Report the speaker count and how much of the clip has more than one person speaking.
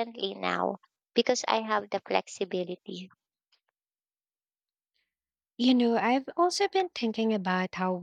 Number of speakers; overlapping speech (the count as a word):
two, no overlap